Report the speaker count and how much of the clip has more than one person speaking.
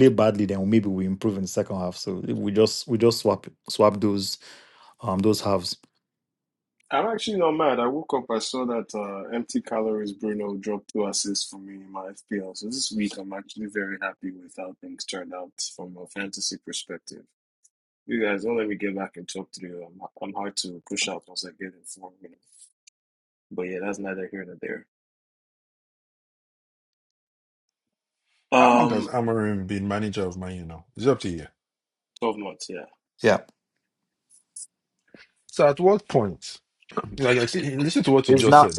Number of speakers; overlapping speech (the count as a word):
three, about 3%